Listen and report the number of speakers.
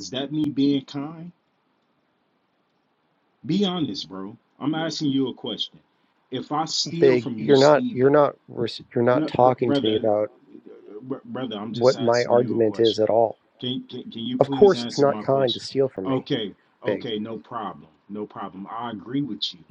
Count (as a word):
two